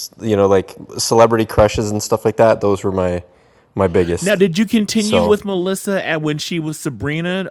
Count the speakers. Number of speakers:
2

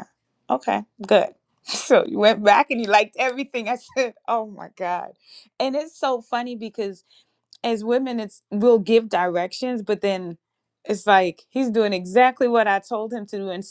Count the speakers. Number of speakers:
1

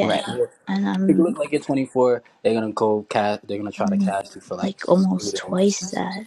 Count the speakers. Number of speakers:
2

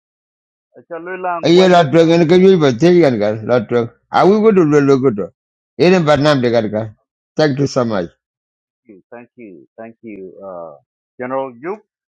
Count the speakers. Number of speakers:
2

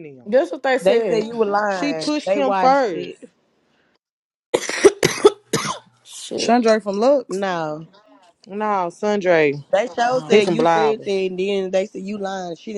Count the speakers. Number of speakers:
4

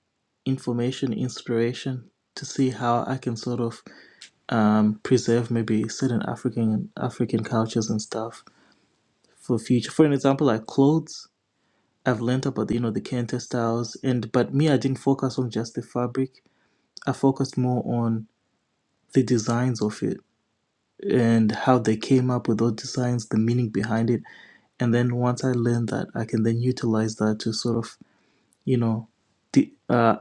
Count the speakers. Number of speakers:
1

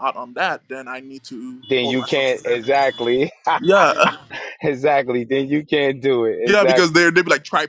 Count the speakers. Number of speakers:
2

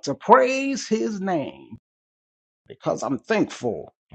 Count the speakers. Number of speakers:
1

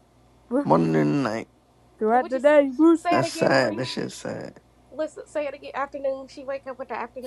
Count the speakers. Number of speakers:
3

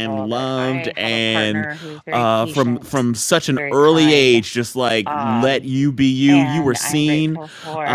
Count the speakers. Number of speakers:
2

